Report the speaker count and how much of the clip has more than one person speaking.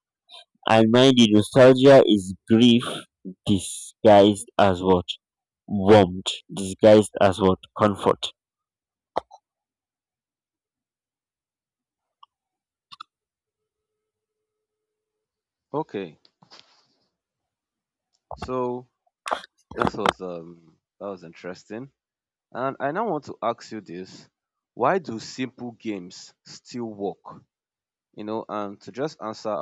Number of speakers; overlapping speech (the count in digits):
2, no overlap